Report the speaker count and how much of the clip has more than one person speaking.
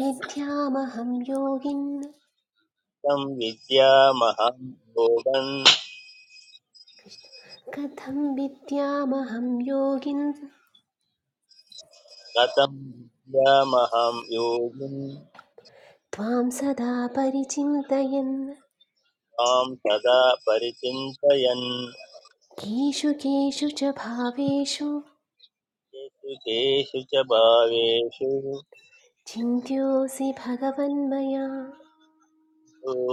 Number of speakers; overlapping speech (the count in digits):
2, no overlap